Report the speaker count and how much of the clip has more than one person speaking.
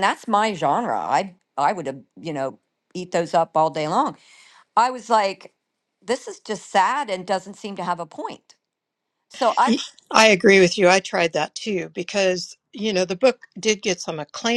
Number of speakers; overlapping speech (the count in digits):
2, no overlap